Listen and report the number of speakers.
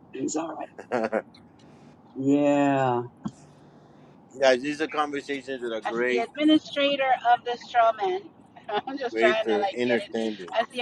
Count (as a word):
three